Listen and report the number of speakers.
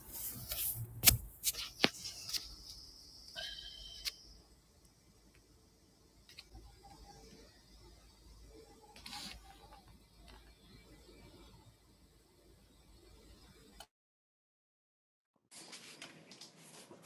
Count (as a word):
zero